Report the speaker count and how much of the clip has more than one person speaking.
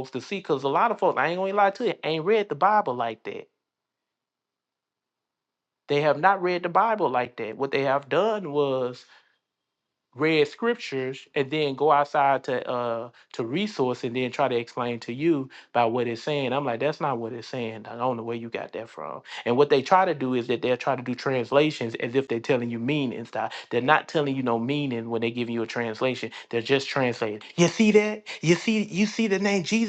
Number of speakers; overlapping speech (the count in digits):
1, no overlap